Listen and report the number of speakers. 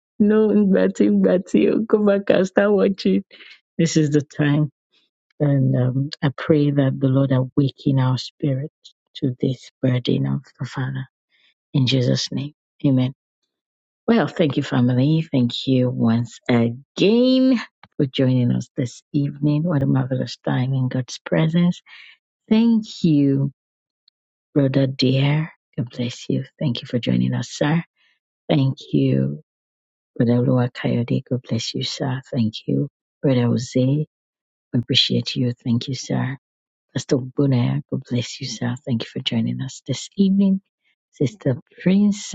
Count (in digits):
1